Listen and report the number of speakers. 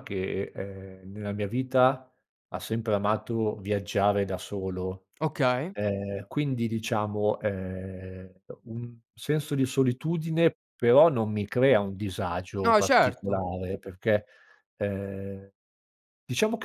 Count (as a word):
two